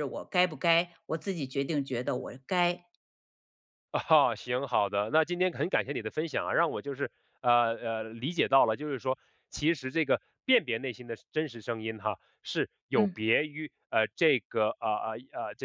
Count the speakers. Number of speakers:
2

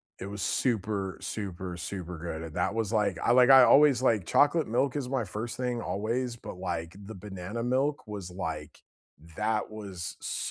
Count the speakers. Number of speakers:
1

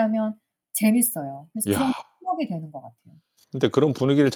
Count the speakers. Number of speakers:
2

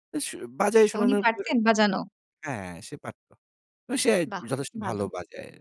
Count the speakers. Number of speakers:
2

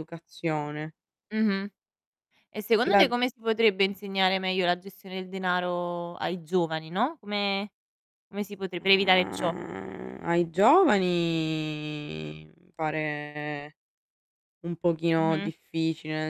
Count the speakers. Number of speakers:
2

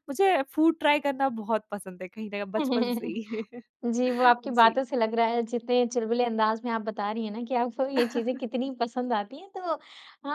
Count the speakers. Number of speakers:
2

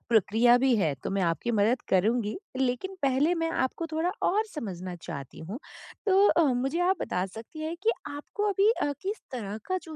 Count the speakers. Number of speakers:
1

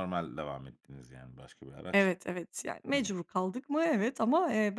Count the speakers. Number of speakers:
2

